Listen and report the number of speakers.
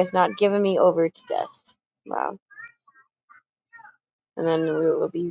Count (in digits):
1